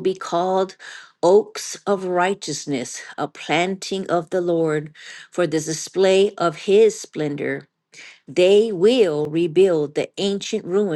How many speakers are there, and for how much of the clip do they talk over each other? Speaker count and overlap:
1, no overlap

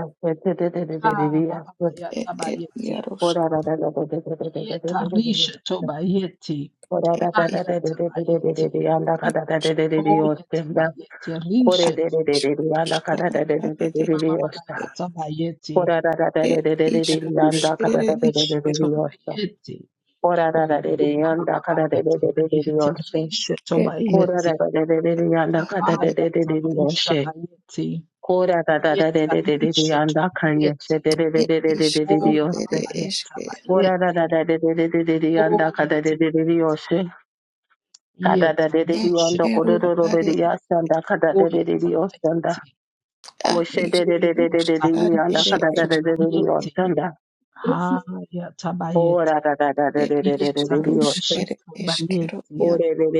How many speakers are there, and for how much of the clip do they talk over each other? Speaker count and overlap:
3, about 56%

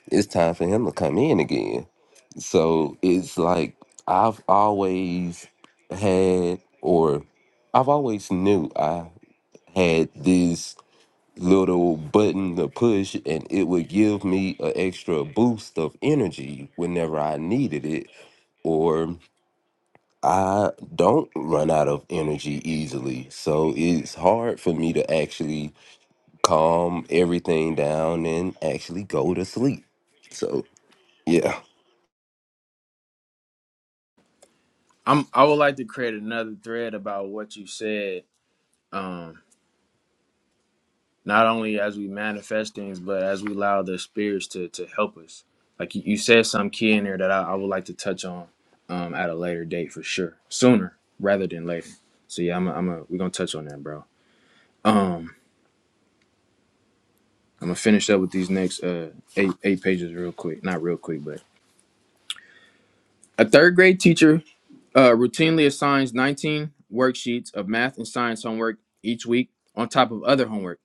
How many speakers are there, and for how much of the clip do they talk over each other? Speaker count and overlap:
2, no overlap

